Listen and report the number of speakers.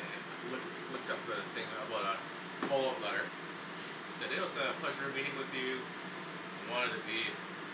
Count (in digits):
1